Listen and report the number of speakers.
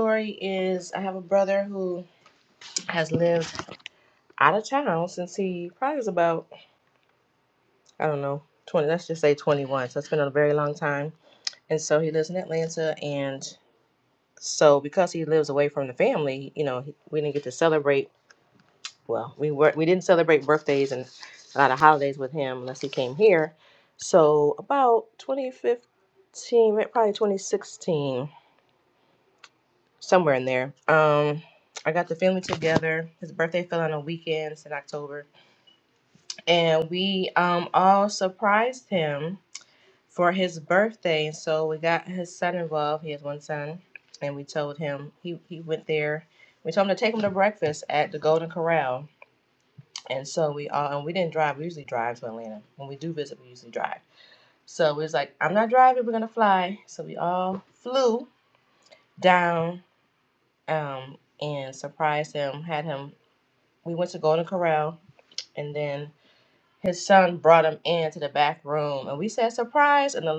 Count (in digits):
1